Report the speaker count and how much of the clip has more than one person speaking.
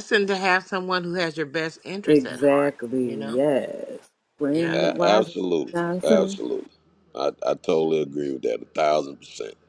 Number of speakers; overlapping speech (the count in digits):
3, about 25%